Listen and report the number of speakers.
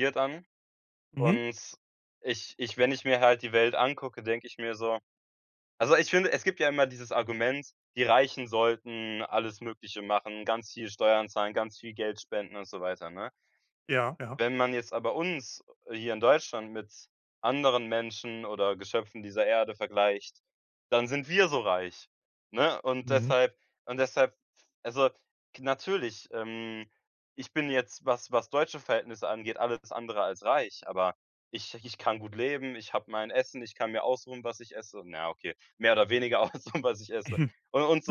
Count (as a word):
two